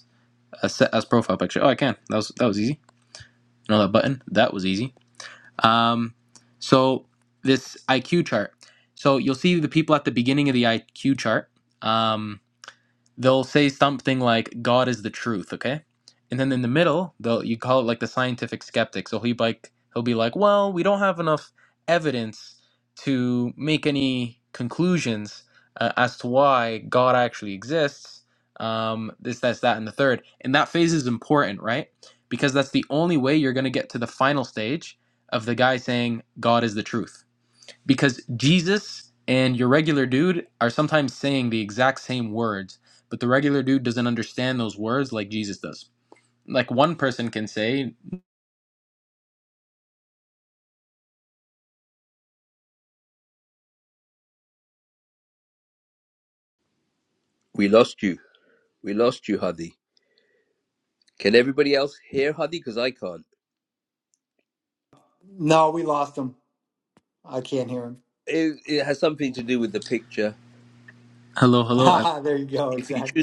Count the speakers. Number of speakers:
three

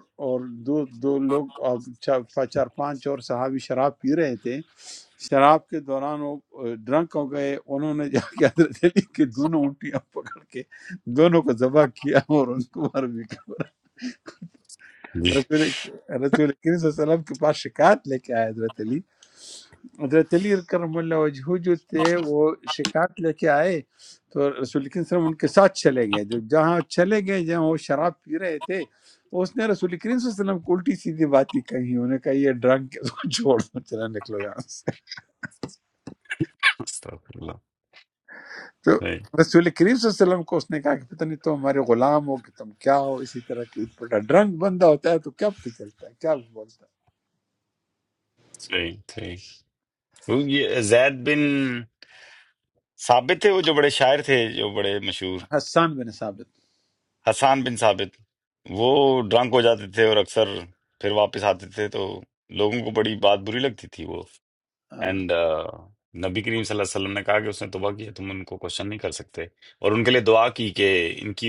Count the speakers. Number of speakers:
two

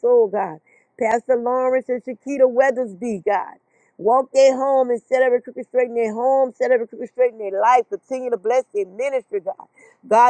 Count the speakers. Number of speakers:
one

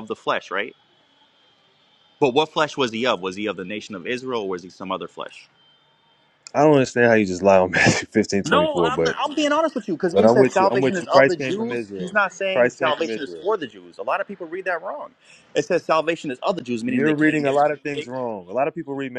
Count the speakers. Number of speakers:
two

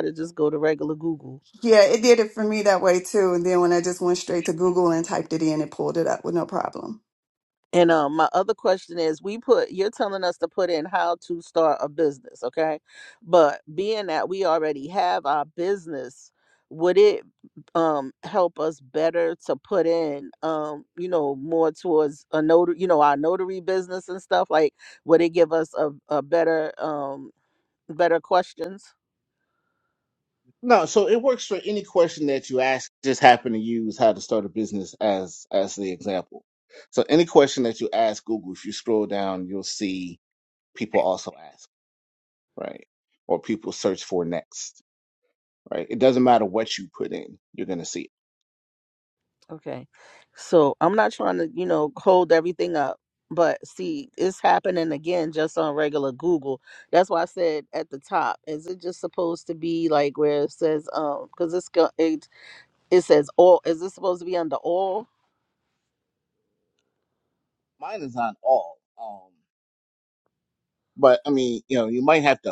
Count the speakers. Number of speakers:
three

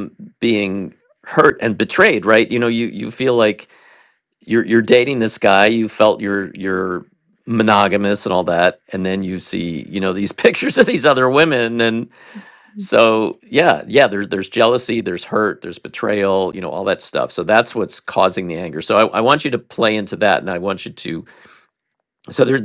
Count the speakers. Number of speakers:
one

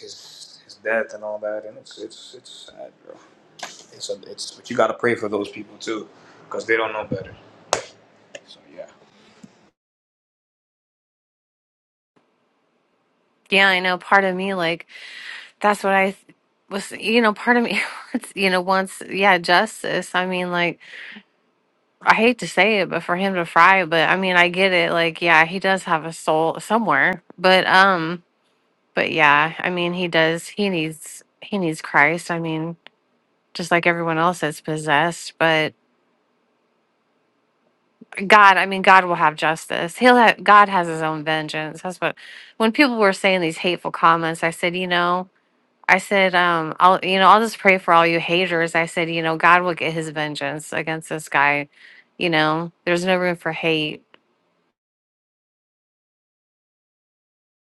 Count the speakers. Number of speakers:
two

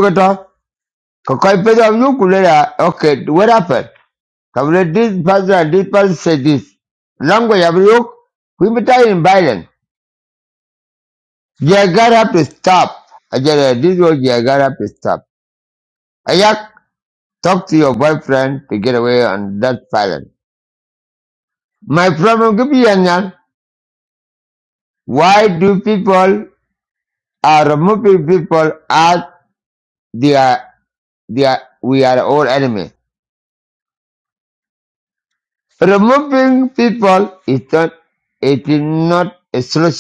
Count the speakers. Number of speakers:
one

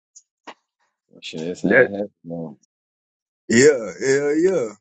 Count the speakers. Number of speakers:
two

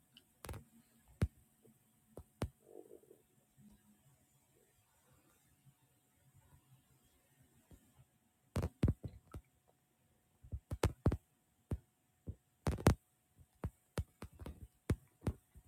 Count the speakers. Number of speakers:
zero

